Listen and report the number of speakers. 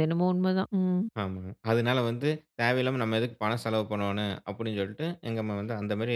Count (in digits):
2